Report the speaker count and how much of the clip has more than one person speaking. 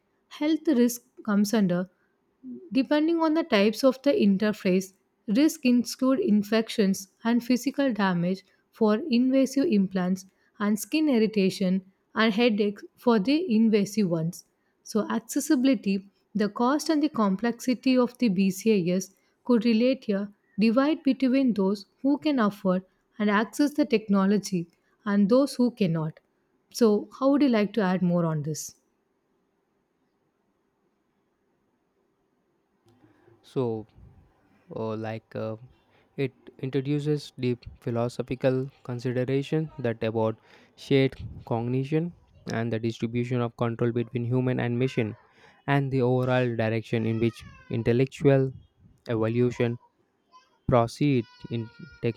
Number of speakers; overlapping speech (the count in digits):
2, no overlap